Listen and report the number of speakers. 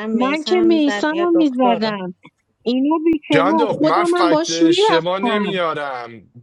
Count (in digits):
3